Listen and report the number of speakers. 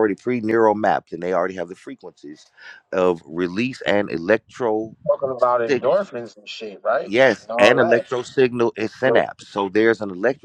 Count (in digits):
2